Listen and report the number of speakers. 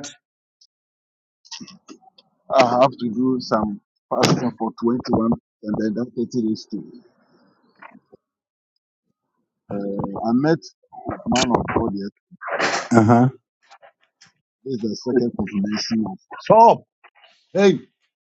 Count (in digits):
2